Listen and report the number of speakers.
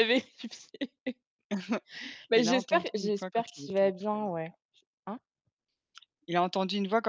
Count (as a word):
two